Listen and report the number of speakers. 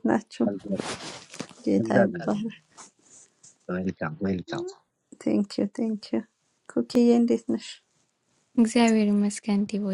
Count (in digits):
3